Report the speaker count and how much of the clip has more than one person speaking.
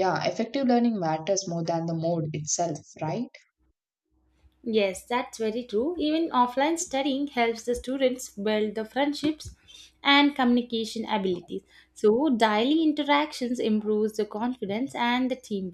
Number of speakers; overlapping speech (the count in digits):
2, no overlap